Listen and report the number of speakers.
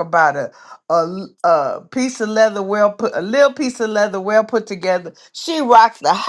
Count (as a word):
one